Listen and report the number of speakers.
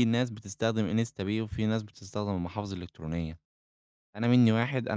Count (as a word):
one